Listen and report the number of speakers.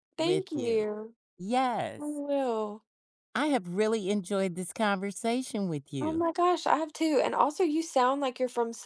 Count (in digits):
2